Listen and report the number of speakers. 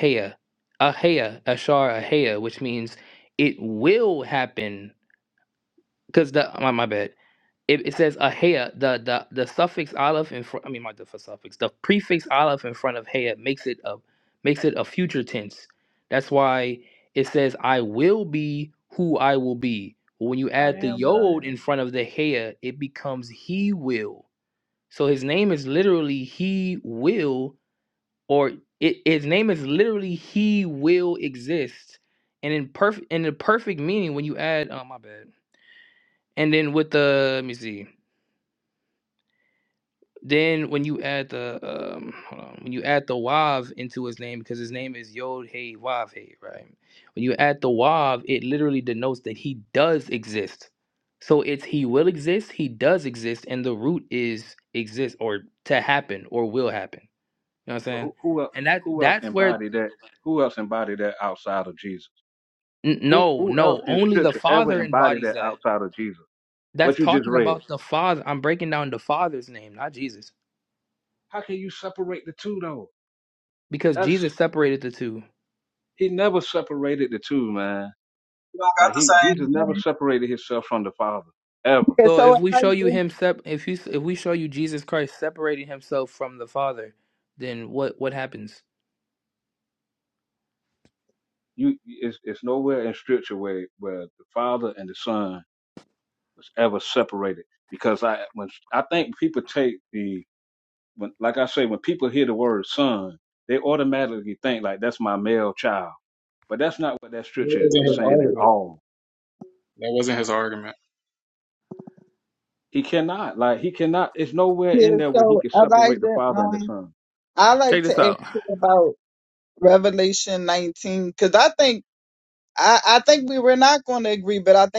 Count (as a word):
four